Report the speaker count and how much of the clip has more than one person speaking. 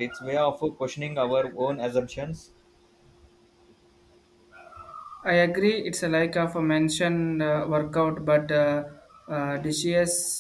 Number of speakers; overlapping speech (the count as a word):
two, no overlap